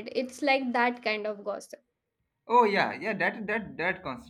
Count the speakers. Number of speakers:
two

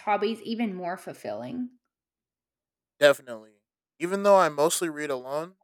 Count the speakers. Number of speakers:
two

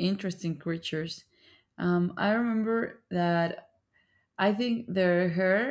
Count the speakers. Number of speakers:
one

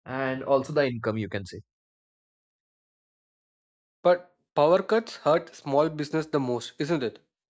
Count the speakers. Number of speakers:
two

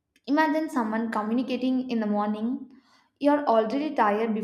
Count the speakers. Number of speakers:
one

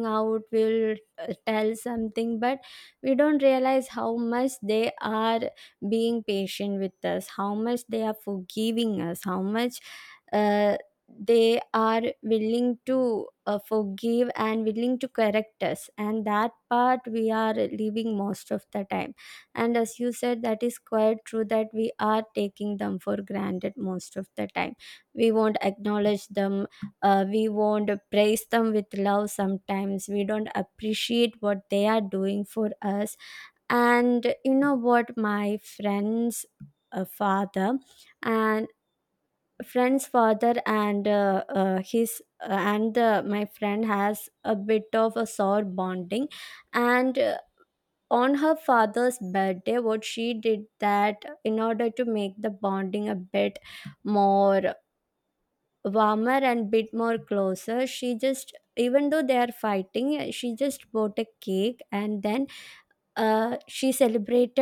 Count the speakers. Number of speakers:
one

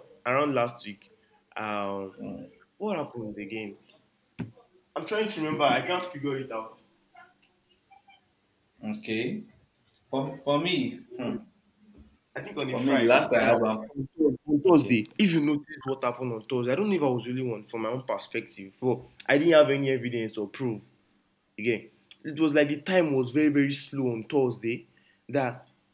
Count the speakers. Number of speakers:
two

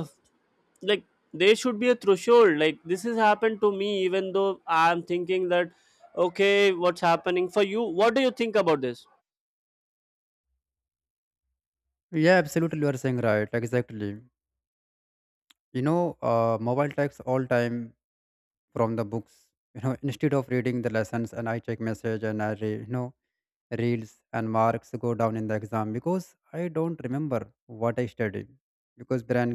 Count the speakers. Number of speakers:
two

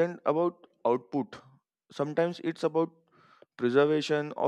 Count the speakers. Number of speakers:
one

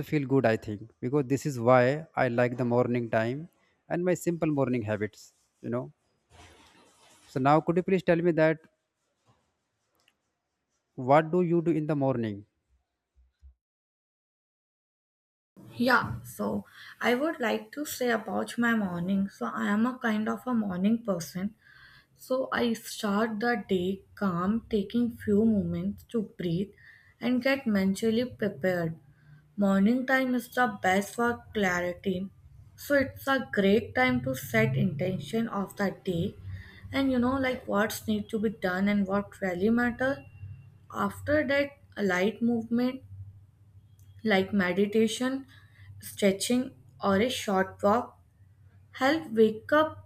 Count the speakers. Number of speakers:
two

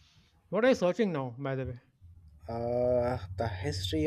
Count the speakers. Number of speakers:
two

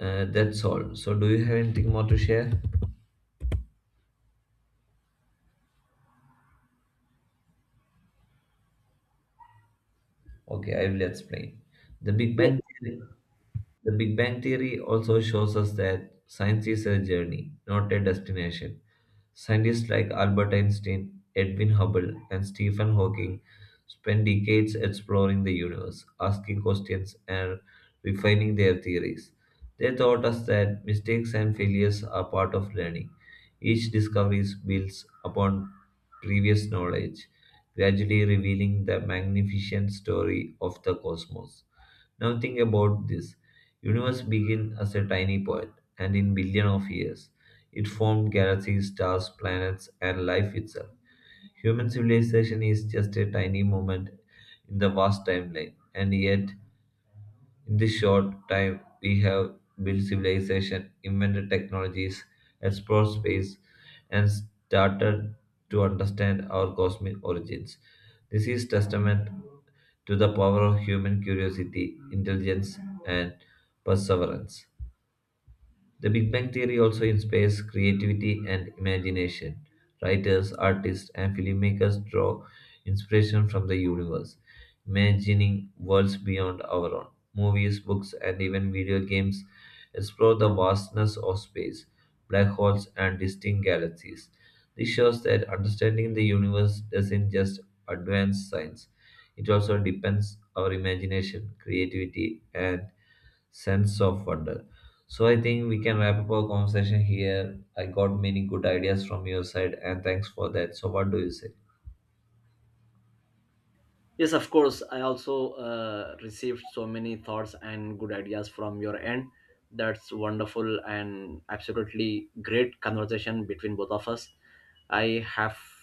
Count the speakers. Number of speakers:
two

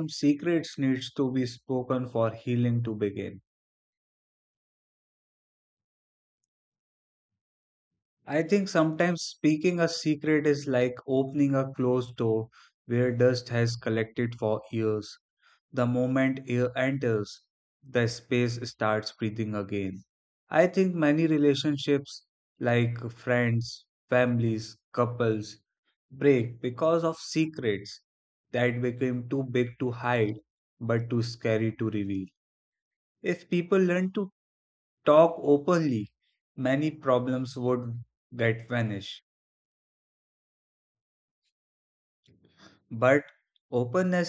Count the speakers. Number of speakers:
one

